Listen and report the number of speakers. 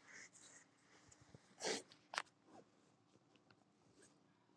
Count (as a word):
zero